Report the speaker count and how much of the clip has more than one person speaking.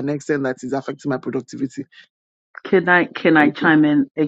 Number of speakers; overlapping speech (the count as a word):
two, about 7%